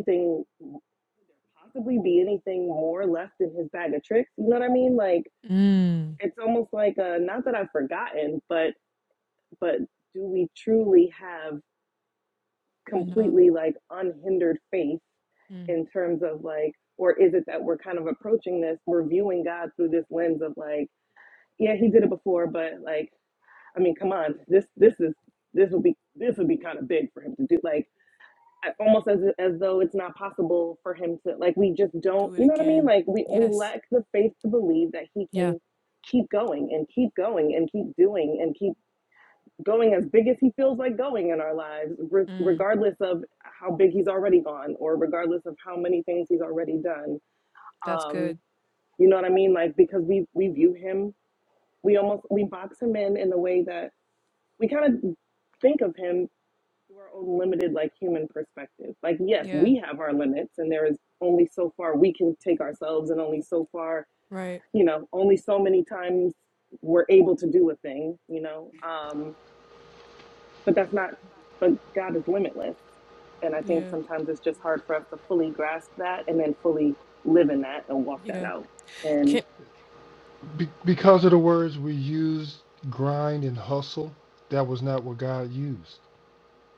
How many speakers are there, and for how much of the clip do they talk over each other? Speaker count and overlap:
3, about 3%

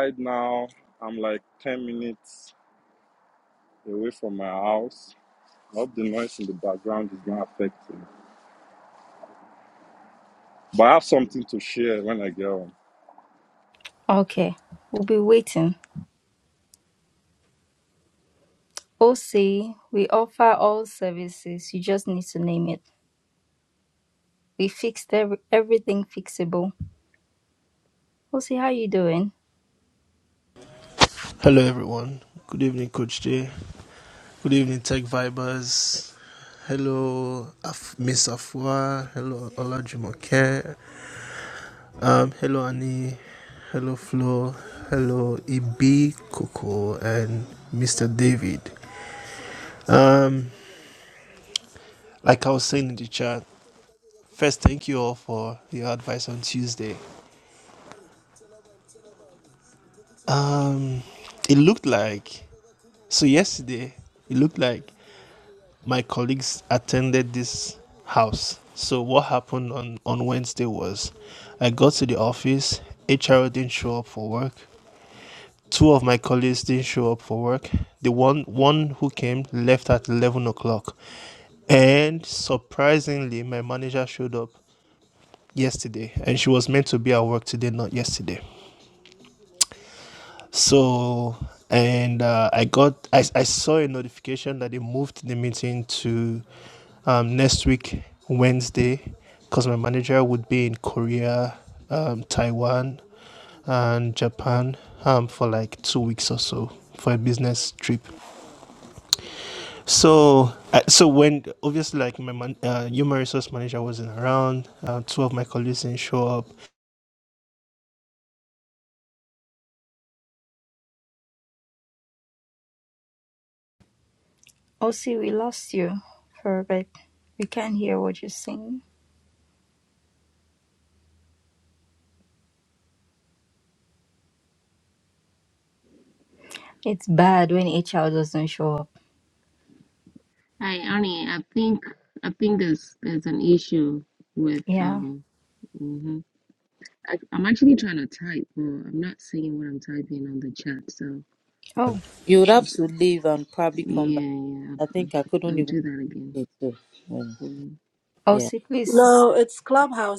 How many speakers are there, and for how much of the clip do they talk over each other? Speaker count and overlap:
6, about 1%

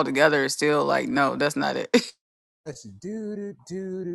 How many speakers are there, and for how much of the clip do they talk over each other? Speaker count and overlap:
2, under 1%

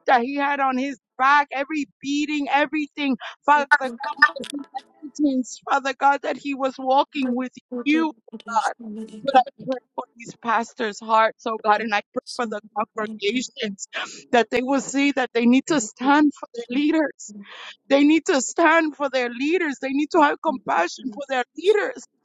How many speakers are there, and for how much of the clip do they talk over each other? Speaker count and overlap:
1, no overlap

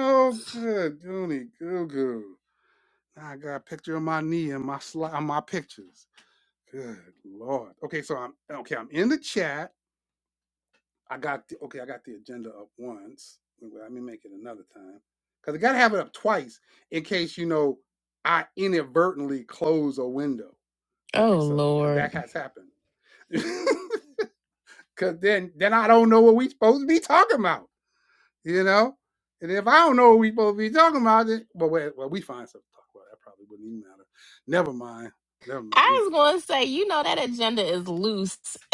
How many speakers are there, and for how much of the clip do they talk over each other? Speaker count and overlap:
2, about 3%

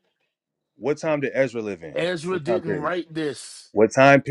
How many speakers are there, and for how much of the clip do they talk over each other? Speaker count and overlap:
2, about 14%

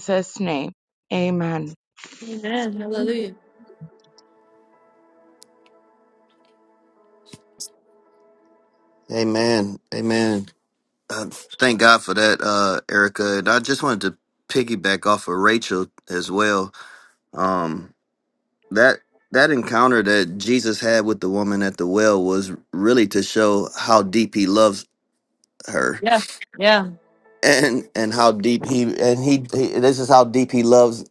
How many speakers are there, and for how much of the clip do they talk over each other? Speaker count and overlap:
3, no overlap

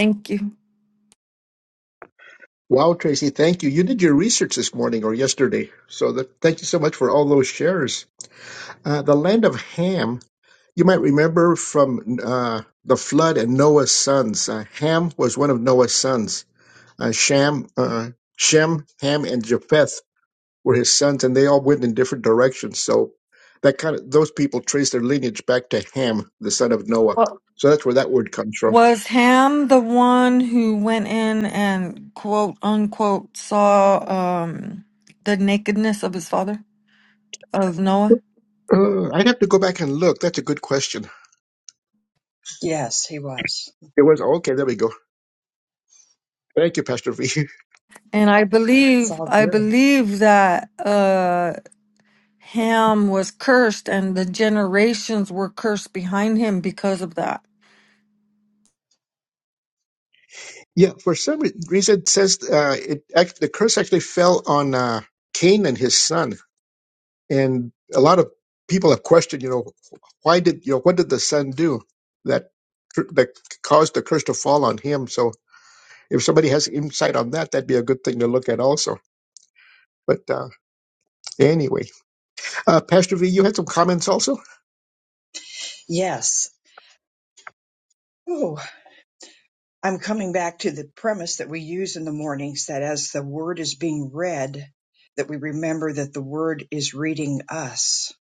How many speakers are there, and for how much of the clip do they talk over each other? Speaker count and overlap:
3, about 1%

